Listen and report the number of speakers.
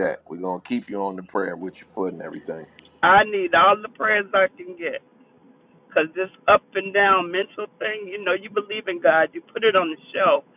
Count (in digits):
2